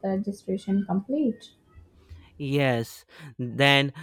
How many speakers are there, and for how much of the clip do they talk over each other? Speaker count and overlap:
2, no overlap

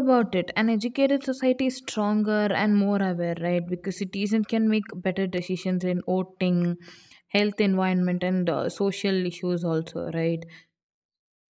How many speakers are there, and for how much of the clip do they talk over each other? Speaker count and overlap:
1, no overlap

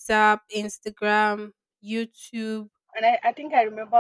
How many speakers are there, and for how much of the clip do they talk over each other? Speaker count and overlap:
2, no overlap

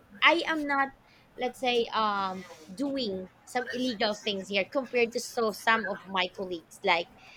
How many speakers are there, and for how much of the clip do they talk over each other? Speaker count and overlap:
1, no overlap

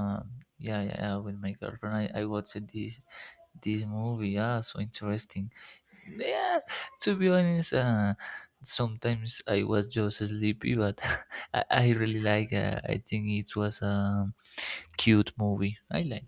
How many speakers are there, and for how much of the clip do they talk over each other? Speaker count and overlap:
1, no overlap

